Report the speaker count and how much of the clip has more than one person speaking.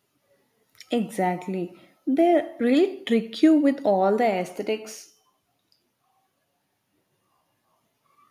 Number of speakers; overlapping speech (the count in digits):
1, no overlap